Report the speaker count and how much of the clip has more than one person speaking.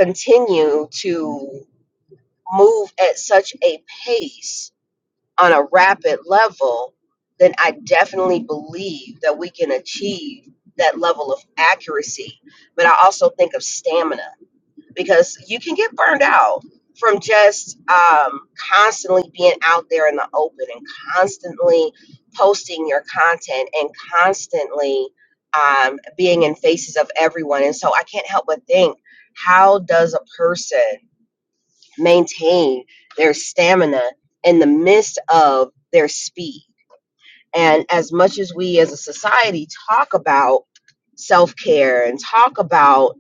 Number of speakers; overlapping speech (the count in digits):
1, no overlap